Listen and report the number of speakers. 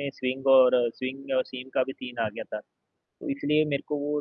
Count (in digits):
1